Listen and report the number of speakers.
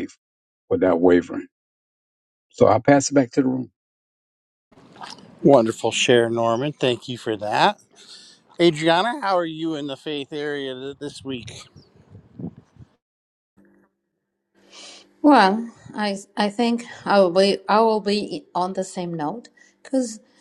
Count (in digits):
3